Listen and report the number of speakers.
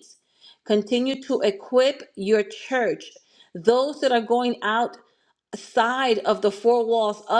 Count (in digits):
1